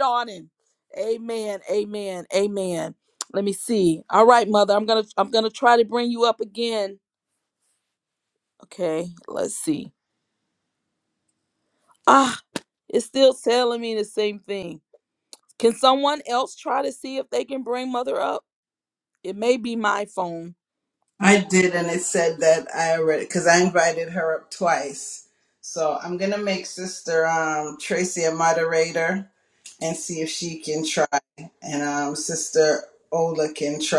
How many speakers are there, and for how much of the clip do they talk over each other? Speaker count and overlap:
two, no overlap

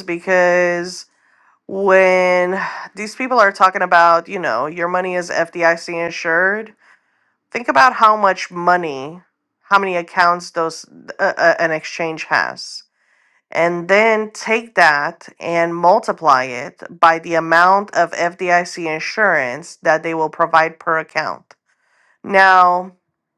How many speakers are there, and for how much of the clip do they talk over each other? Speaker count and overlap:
one, no overlap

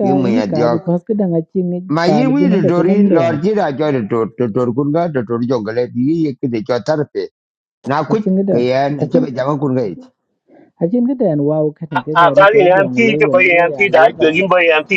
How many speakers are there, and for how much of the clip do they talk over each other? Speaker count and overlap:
three, about 38%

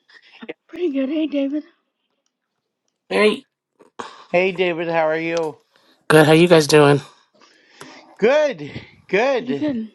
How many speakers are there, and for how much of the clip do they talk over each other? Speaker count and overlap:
three, about 4%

